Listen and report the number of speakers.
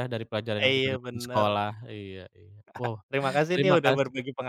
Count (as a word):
two